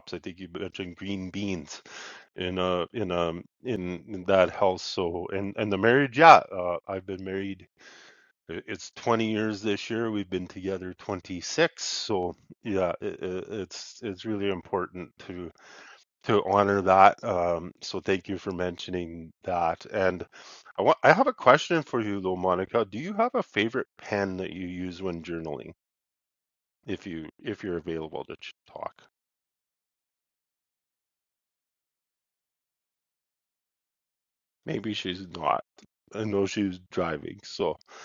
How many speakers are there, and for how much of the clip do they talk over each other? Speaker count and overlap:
1, no overlap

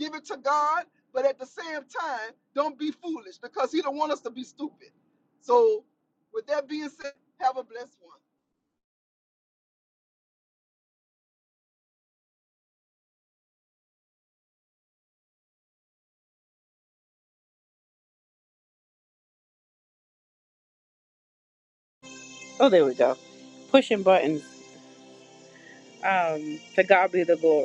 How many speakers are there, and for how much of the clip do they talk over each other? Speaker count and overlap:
2, no overlap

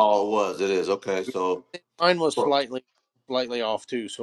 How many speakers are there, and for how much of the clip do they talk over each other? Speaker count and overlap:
2, about 5%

